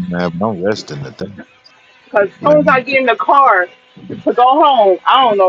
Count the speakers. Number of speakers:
two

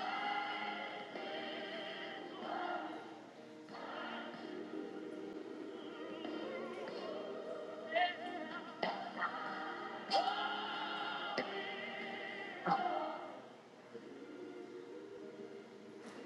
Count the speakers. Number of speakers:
zero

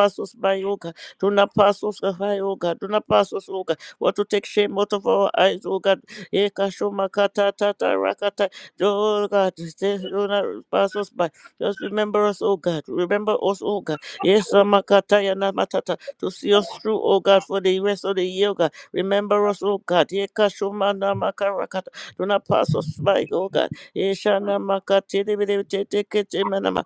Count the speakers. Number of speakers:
one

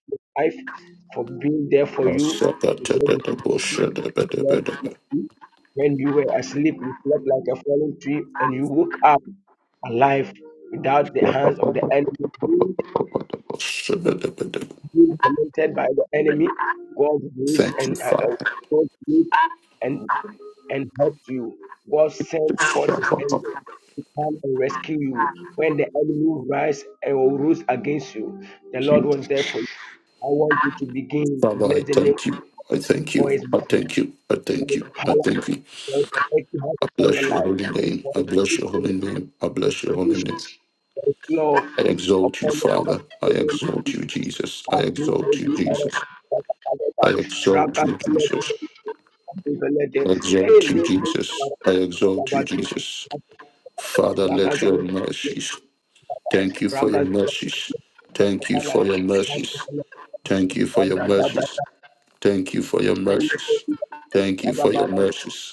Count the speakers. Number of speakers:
two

